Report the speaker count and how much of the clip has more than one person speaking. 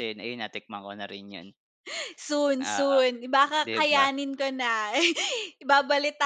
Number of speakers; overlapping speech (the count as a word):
two, about 14%